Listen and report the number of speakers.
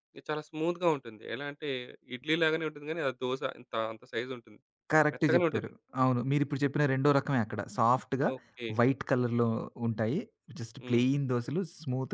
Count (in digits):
2